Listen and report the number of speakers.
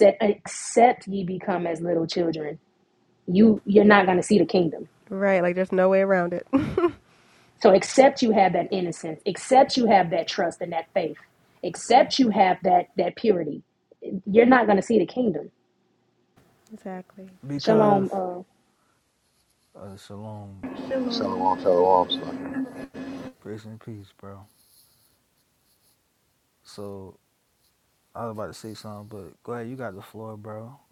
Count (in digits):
4